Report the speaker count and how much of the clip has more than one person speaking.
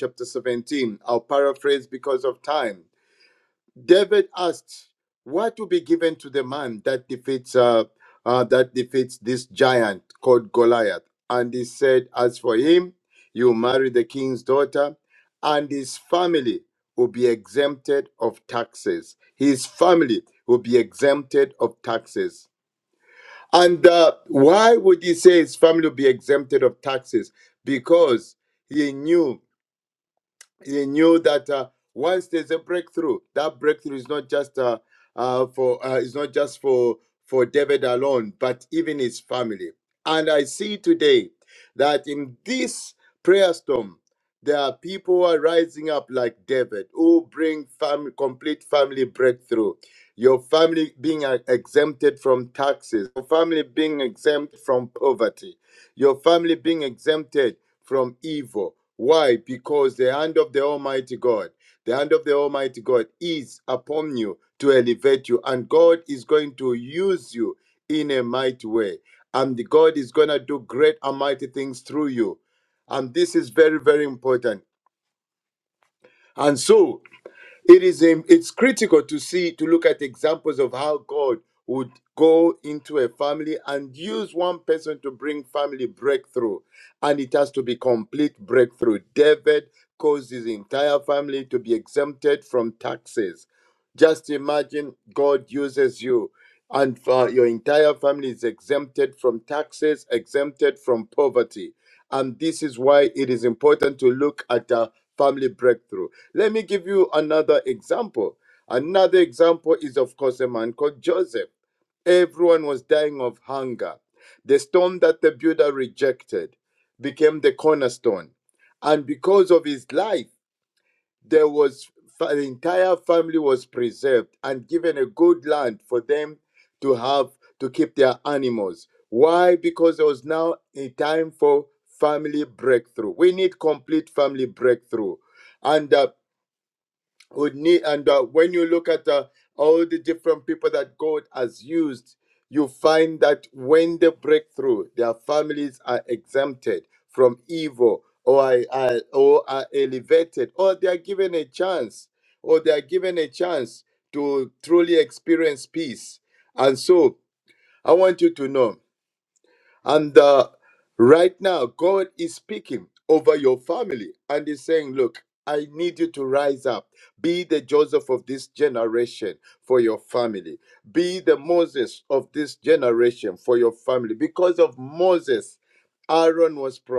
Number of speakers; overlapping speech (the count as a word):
one, no overlap